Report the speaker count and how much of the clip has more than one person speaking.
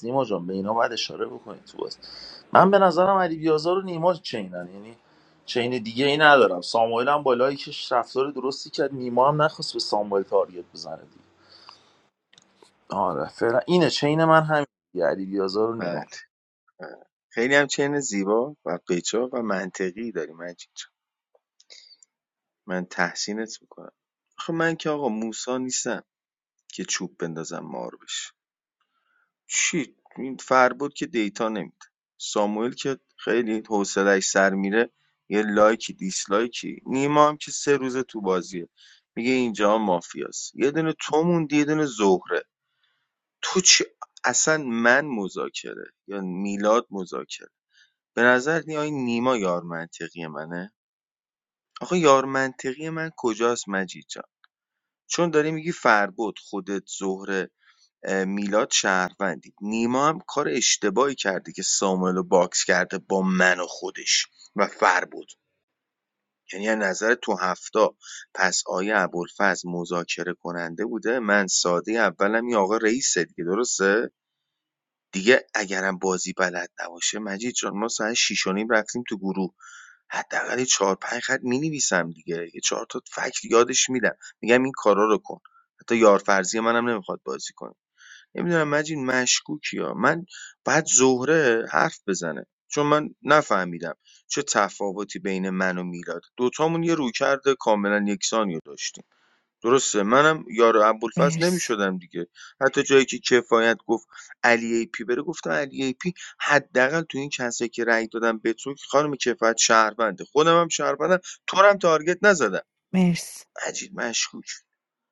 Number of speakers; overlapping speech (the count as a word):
three, about 1%